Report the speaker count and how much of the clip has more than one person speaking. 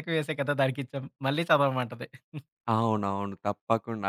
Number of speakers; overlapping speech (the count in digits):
2, no overlap